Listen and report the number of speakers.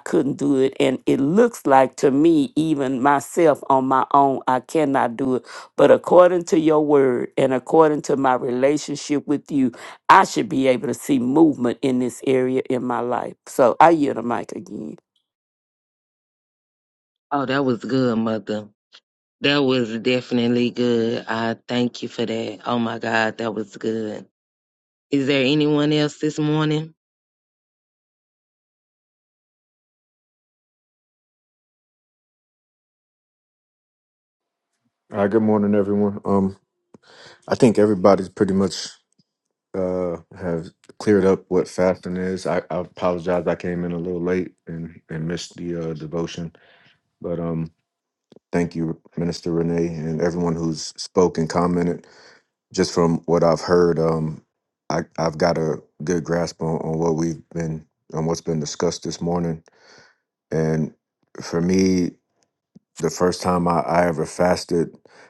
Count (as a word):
three